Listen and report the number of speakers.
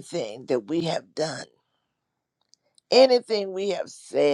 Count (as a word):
one